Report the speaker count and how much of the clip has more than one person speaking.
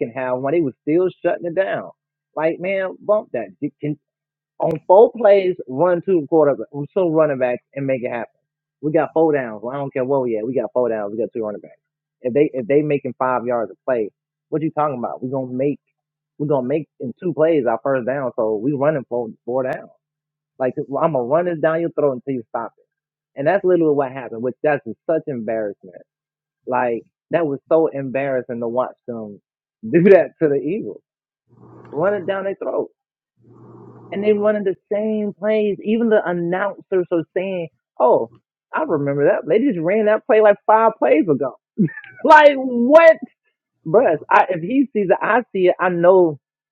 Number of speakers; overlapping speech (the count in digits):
1, no overlap